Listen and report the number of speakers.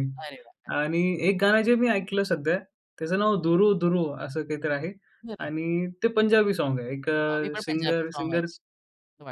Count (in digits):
2